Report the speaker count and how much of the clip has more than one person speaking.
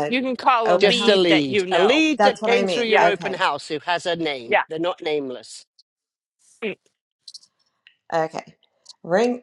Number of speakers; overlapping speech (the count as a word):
three, about 31%